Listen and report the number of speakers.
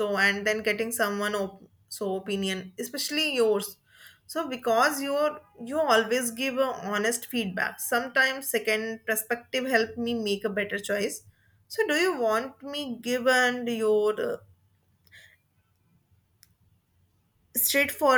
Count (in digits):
1